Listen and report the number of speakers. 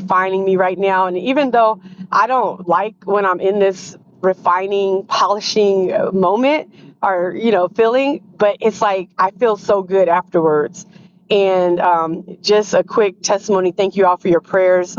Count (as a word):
one